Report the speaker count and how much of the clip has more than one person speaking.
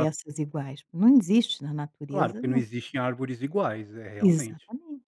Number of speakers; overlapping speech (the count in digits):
2, about 19%